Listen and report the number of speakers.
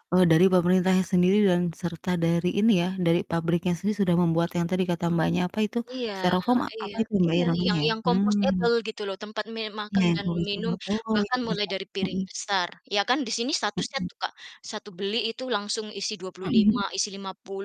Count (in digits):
2